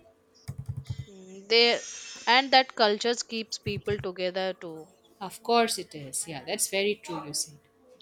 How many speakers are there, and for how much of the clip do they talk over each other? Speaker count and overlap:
2, no overlap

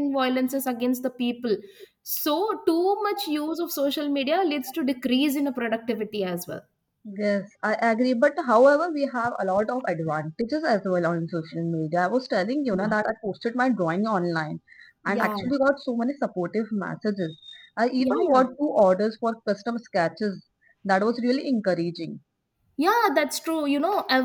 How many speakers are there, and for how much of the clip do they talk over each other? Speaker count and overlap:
2, about 4%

